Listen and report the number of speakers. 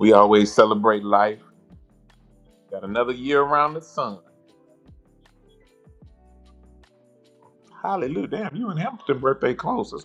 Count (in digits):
1